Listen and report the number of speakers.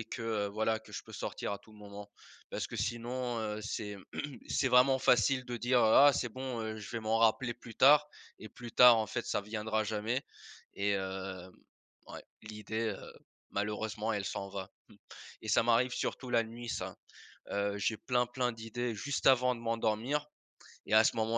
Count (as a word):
one